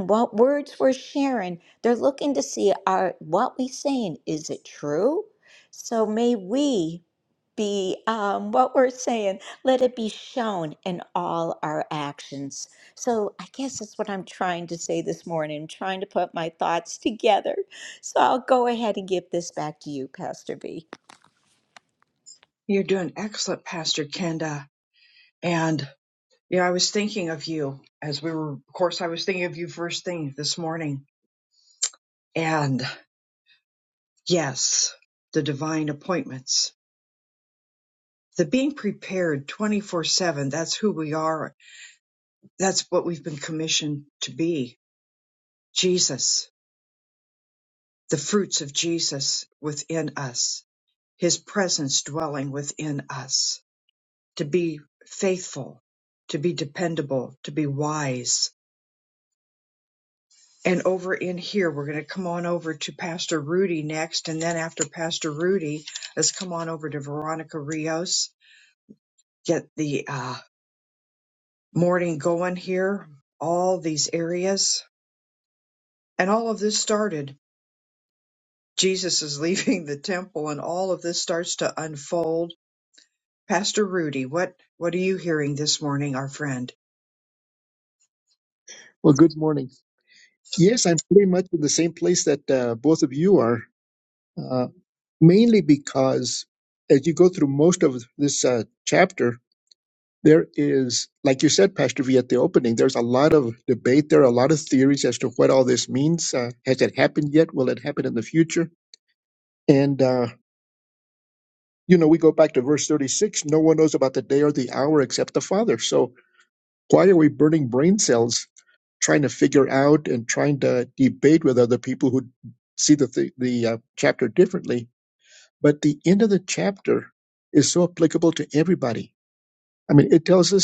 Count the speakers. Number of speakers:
three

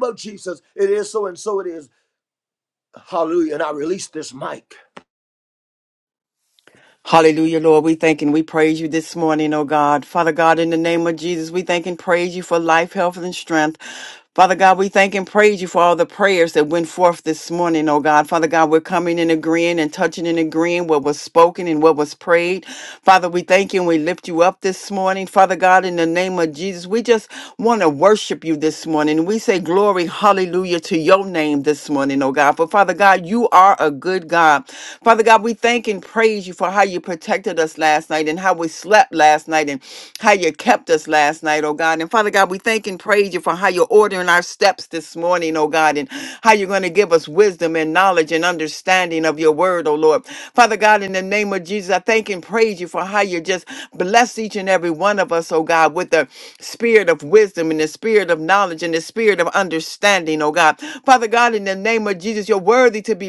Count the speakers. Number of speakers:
two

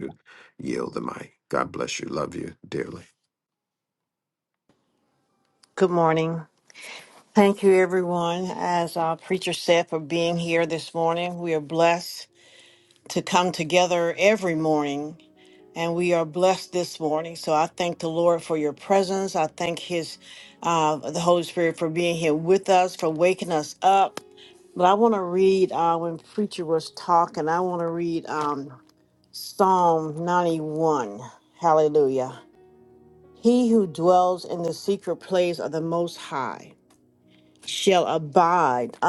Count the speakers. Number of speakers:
two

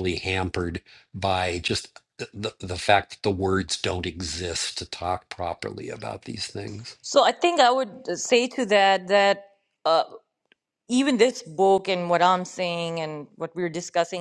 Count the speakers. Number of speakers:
two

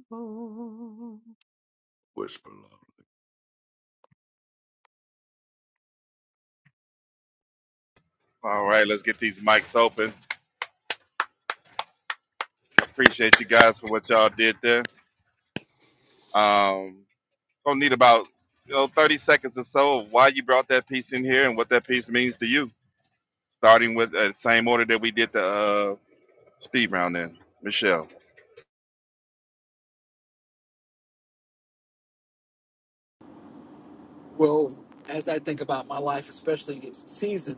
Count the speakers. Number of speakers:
three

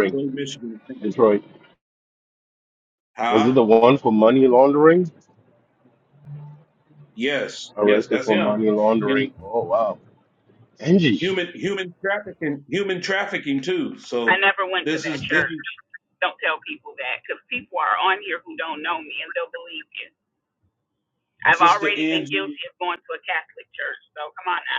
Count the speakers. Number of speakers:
three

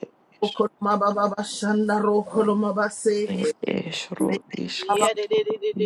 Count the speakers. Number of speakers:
three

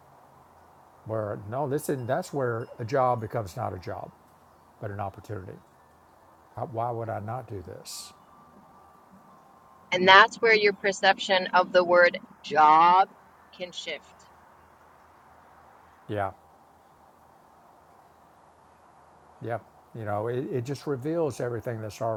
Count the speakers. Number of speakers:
two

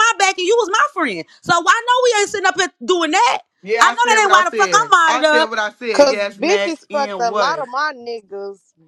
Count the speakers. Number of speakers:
three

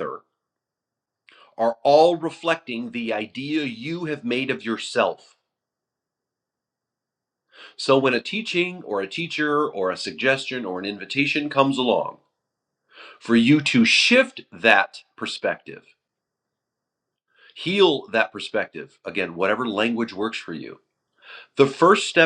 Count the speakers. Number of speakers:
one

